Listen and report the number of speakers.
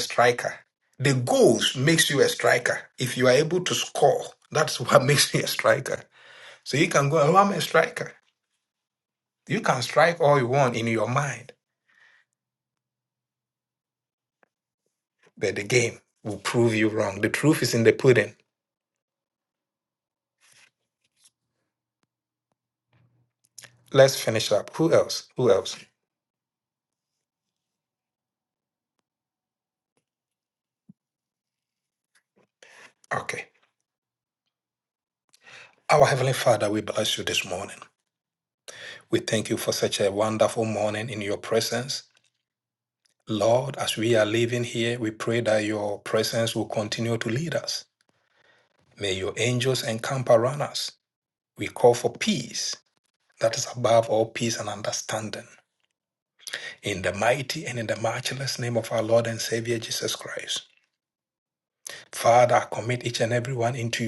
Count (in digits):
1